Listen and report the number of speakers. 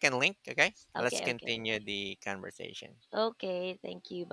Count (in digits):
2